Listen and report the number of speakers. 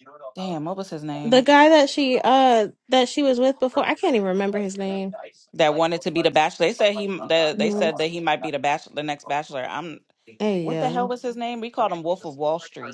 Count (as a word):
two